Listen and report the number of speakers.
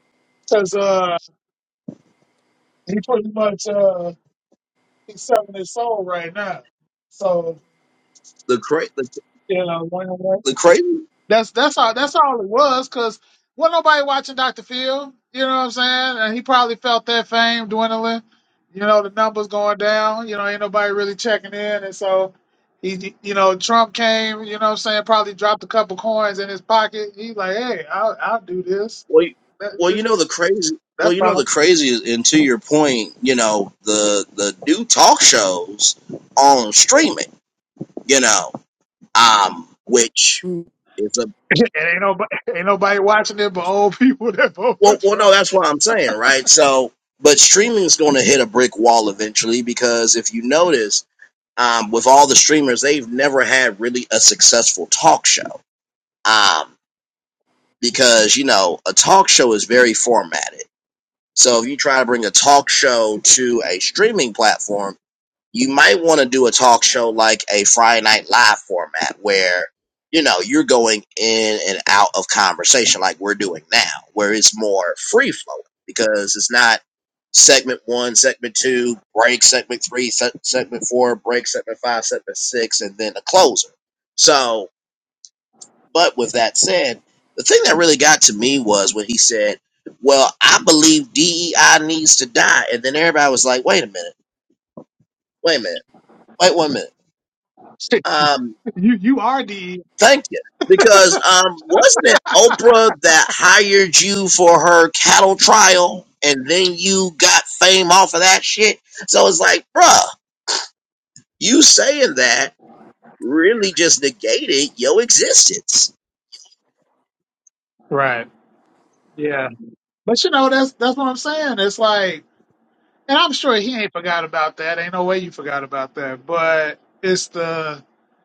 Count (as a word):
two